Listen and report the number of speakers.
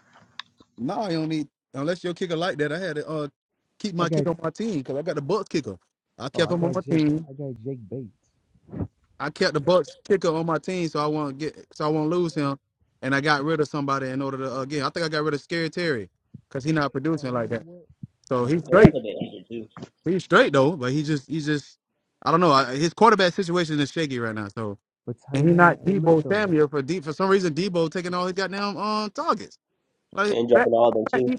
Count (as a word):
three